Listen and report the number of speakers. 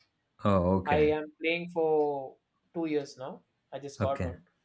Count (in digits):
2